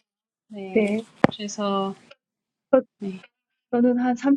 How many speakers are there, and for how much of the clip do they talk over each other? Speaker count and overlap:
2, about 5%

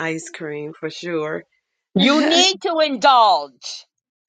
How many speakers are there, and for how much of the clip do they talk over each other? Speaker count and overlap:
2, no overlap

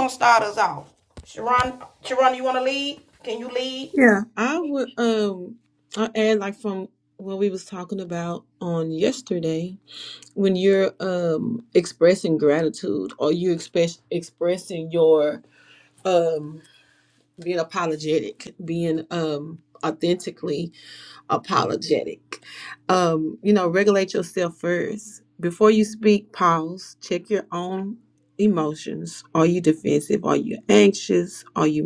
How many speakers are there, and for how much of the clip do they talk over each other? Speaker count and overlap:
2, no overlap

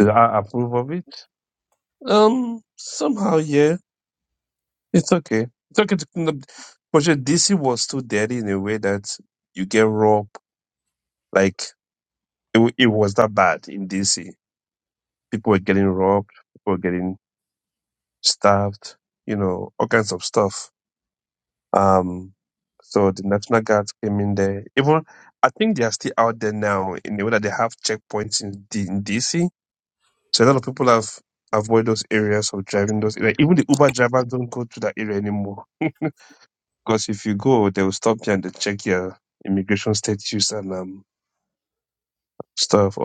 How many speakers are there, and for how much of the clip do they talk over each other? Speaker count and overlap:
1, no overlap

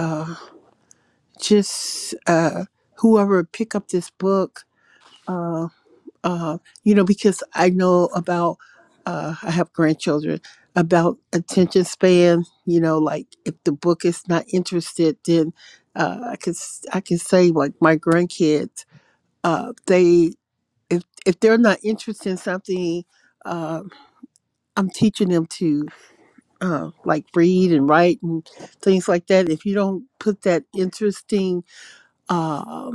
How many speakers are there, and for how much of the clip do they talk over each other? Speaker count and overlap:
1, no overlap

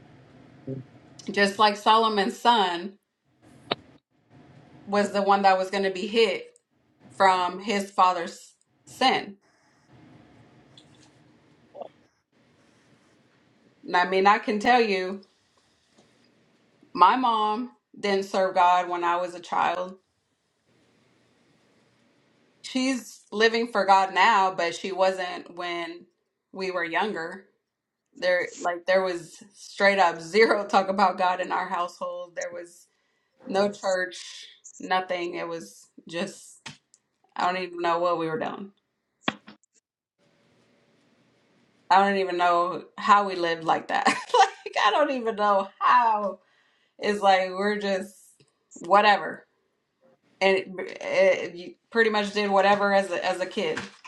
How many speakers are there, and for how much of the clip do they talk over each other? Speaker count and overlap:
1, no overlap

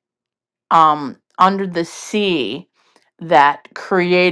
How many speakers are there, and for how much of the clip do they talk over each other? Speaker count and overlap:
1, no overlap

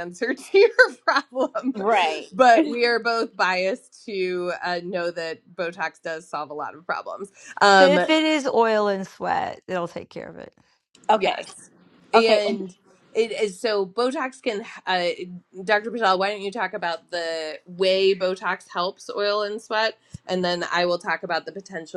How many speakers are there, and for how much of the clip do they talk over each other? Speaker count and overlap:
3, about 4%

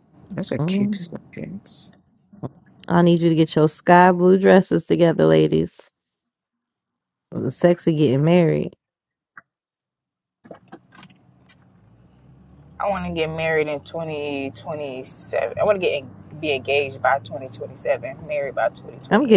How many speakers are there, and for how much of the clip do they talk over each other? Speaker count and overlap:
3, about 1%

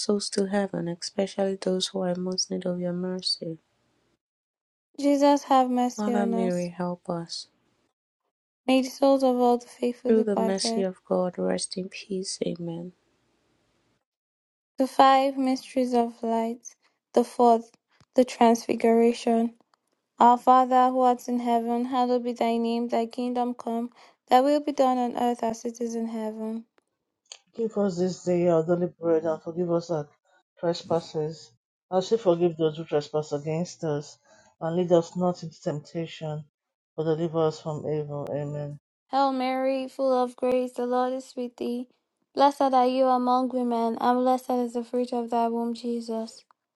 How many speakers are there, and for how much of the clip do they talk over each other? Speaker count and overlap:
3, about 3%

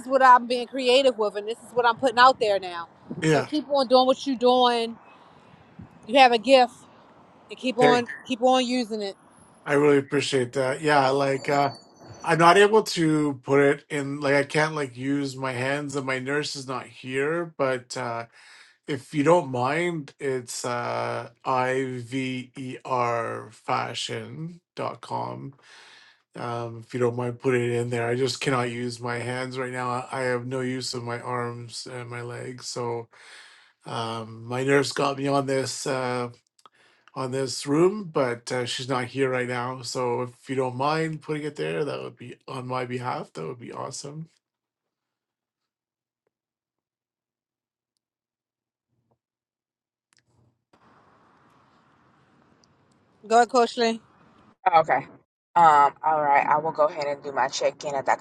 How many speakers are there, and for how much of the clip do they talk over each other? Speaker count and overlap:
3, about 1%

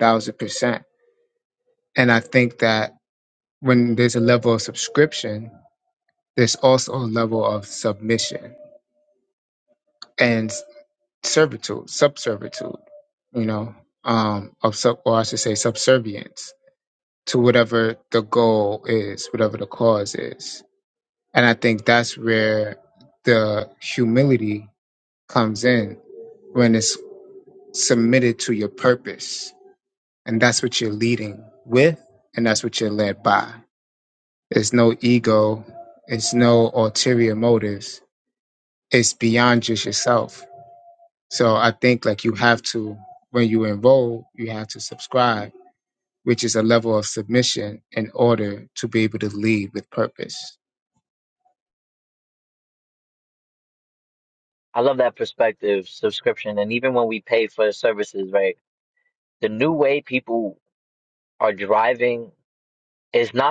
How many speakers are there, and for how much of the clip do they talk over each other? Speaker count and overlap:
2, no overlap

